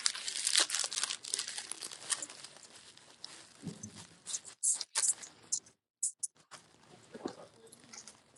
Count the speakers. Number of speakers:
0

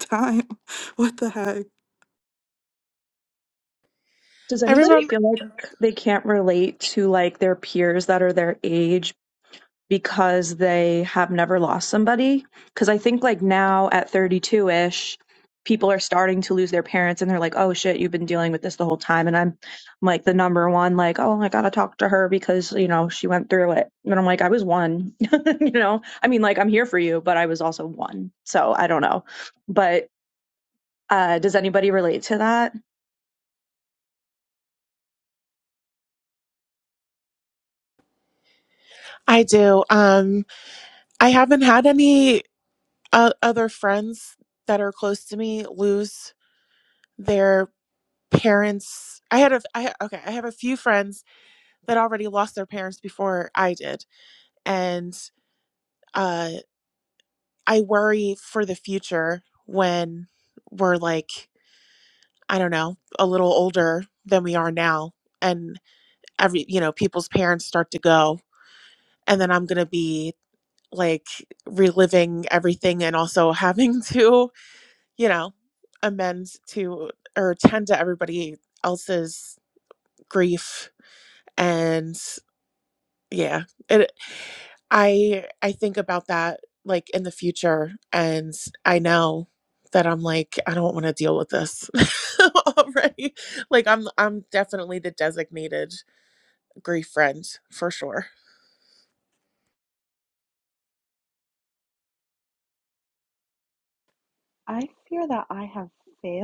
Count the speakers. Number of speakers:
4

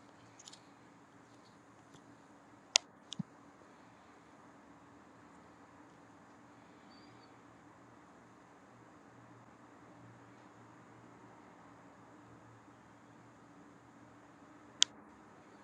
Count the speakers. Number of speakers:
0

